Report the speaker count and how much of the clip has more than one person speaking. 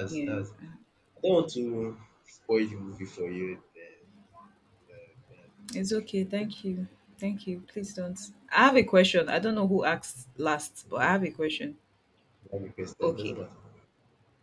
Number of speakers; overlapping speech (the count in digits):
2, about 5%